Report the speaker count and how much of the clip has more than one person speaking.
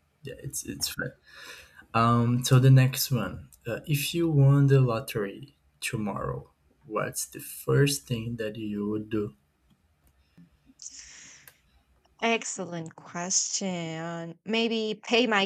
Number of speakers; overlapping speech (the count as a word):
two, no overlap